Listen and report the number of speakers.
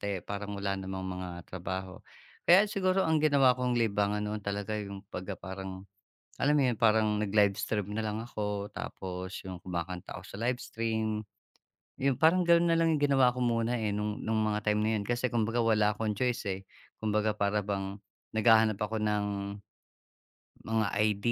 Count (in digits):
1